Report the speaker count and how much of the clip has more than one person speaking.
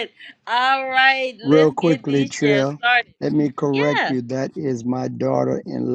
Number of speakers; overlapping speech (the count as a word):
two, about 30%